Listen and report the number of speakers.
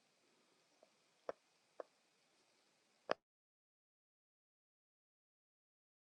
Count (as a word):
zero